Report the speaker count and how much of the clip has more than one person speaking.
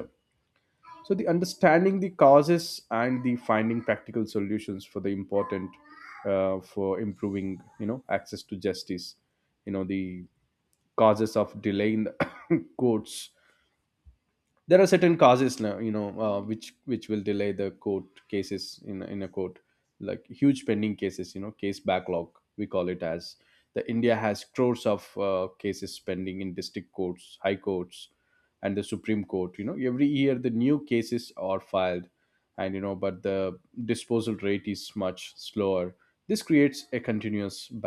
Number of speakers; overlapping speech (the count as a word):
one, no overlap